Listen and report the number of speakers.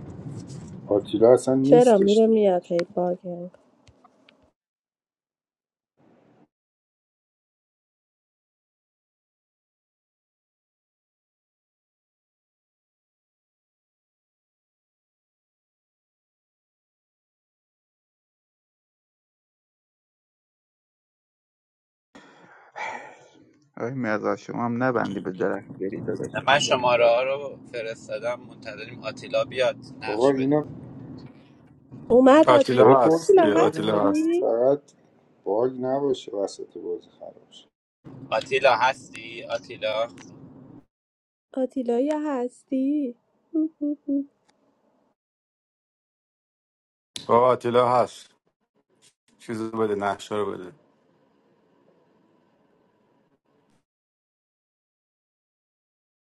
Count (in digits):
5